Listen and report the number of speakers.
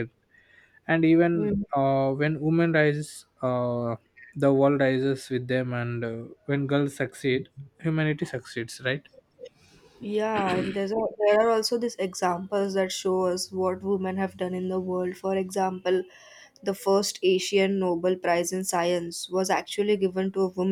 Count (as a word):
two